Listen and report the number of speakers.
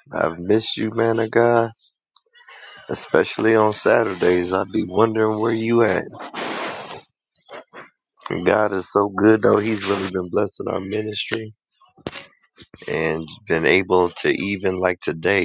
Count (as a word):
one